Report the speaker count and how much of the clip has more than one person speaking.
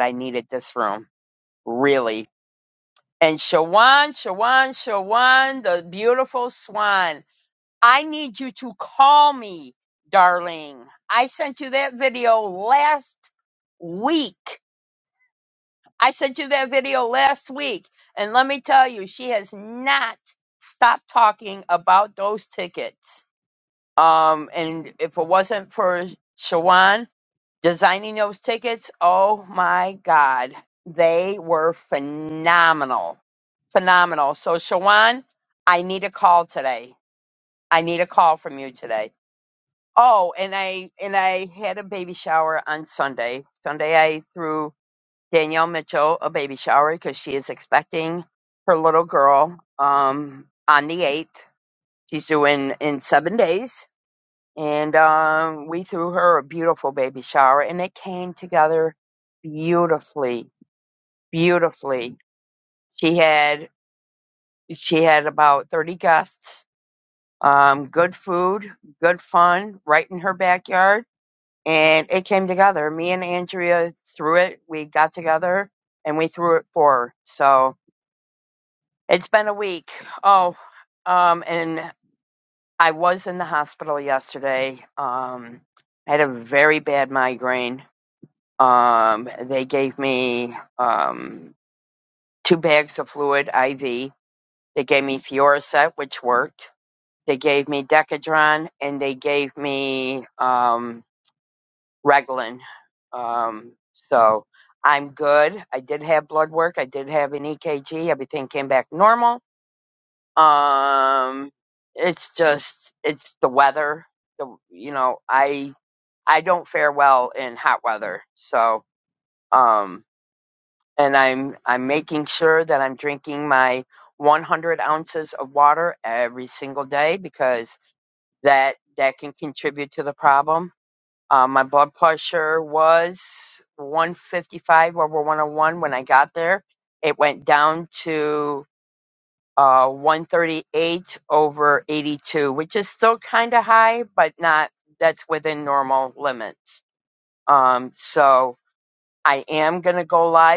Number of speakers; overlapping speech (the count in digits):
1, no overlap